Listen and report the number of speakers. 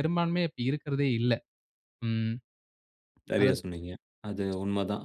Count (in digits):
2